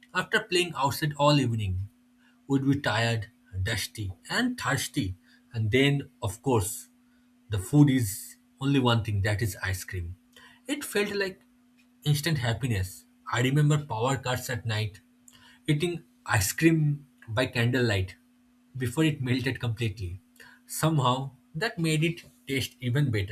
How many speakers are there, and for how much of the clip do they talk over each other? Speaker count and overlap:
1, no overlap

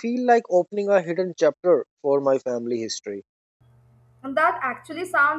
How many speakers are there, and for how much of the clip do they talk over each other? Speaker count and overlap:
2, no overlap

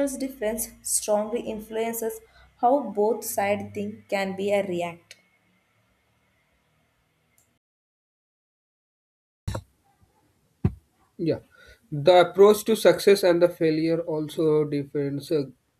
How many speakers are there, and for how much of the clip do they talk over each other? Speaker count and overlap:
2, no overlap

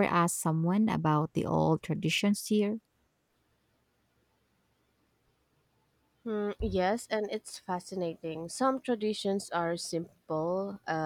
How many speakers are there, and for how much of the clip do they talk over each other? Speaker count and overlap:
2, no overlap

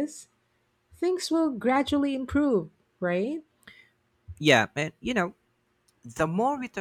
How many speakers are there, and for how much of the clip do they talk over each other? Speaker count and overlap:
2, no overlap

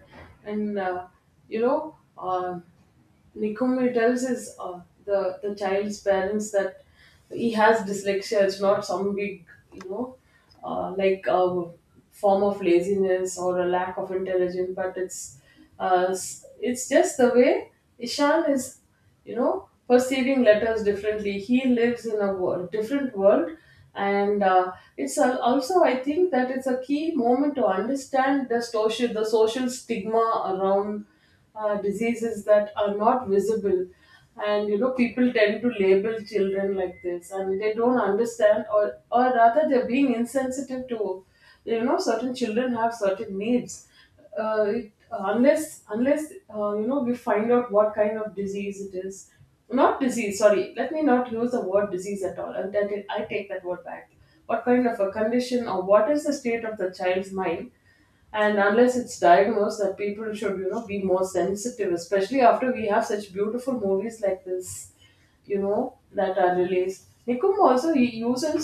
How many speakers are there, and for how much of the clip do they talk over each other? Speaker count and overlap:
1, no overlap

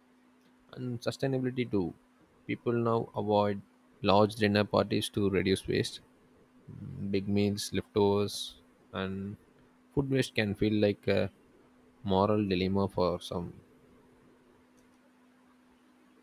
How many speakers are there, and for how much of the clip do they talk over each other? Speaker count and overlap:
1, no overlap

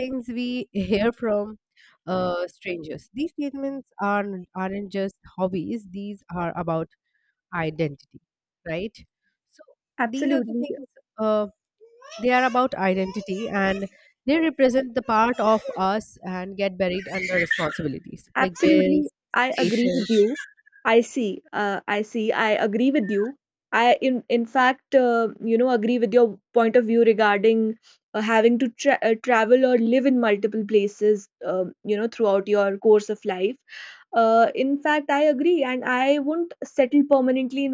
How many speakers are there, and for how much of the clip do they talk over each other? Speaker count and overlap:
2, about 5%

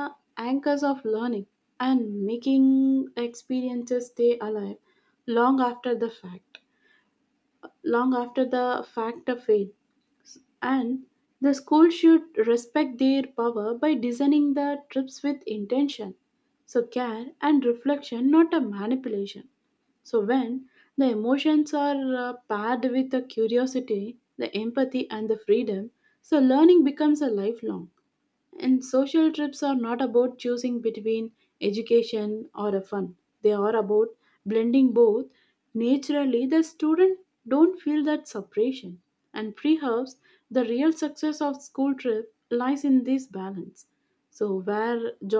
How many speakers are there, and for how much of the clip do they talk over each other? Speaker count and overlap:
1, no overlap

